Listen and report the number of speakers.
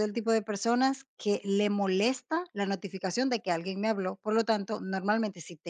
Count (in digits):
1